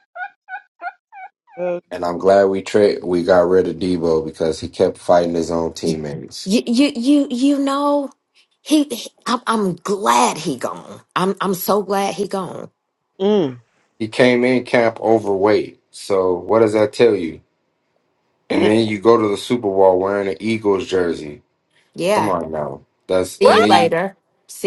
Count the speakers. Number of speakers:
3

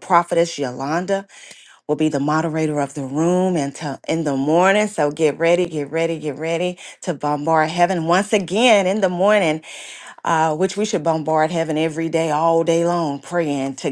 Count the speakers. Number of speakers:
1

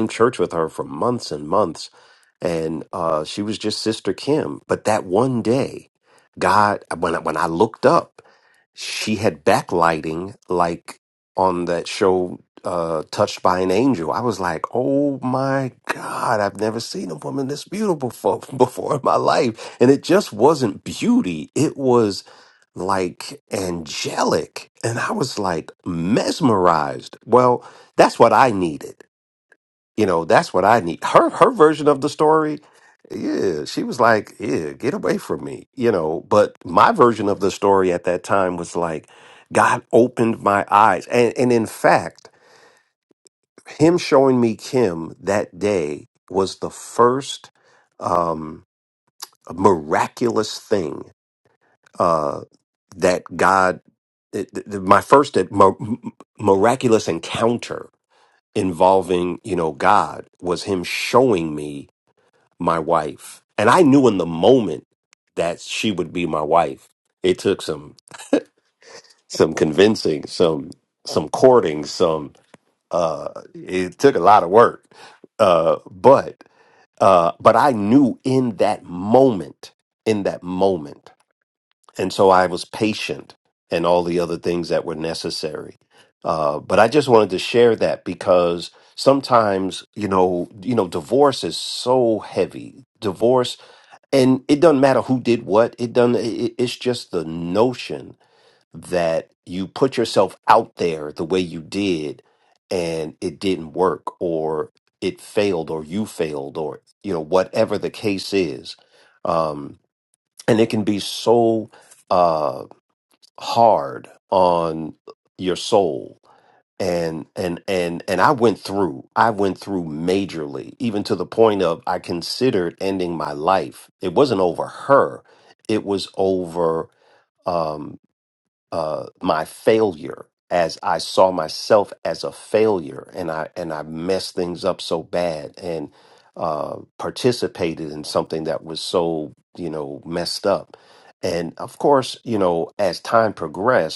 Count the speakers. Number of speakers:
1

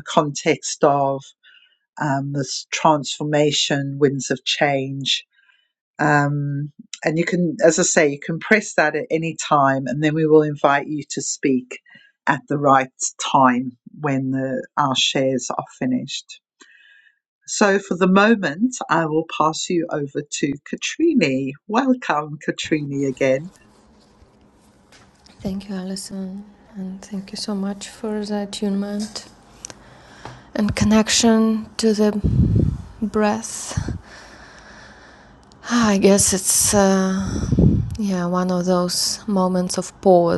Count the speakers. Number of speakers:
2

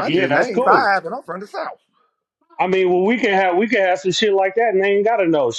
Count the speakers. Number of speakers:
2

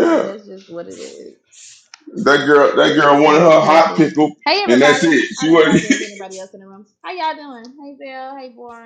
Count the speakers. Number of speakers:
2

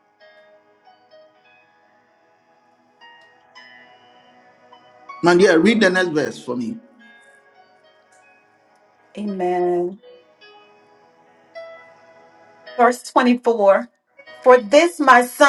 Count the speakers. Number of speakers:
2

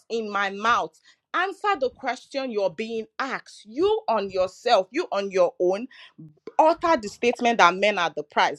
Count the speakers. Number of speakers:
1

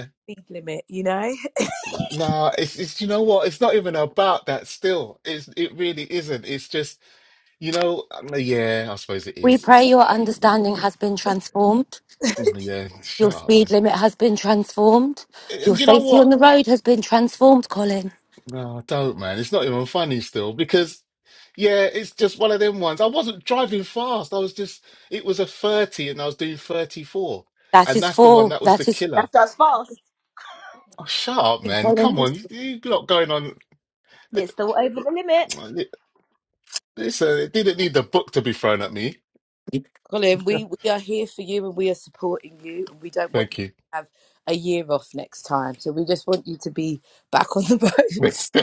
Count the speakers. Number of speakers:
4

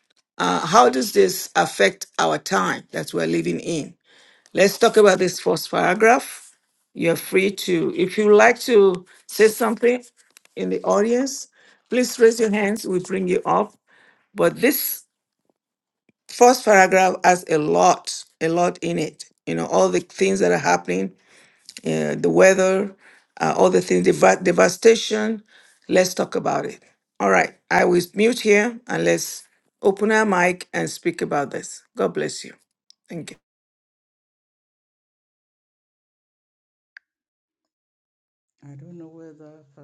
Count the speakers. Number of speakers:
2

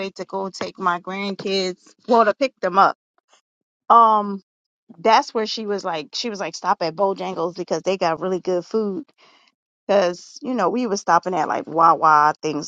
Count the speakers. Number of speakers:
1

